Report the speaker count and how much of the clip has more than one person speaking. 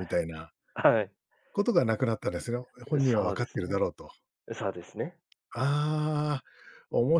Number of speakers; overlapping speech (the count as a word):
two, about 13%